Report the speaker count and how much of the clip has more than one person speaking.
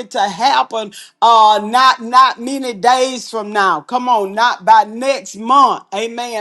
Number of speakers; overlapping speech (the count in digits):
1, no overlap